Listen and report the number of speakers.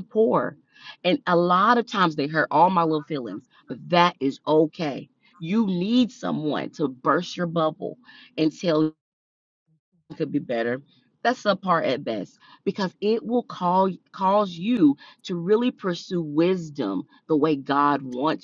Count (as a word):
one